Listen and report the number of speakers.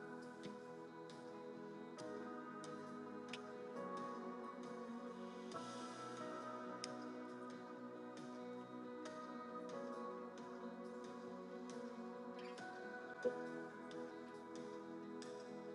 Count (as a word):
zero